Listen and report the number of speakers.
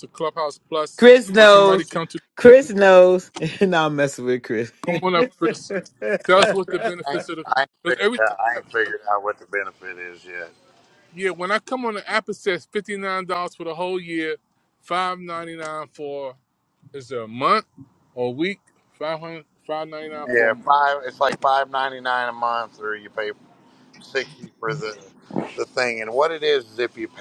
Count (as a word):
three